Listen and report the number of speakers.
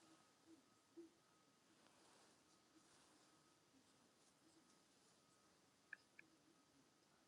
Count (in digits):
0